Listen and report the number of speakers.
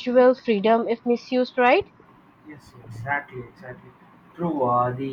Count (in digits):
2